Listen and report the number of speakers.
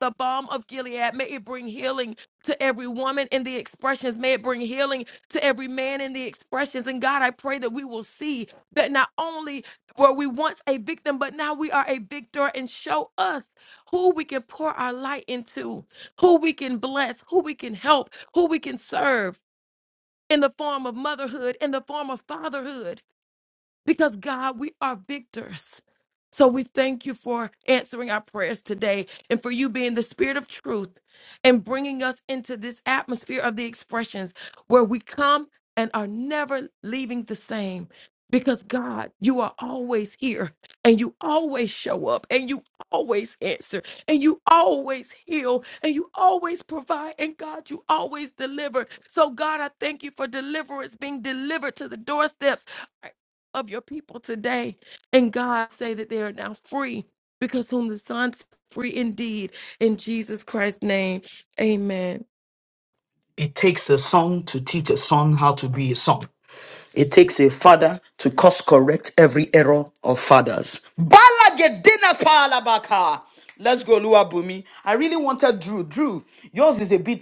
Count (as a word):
two